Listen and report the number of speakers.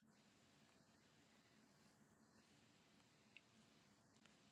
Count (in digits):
0